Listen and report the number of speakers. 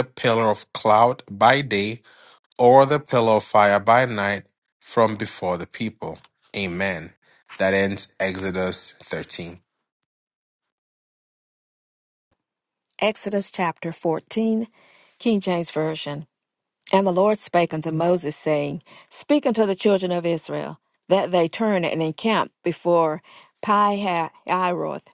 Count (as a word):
two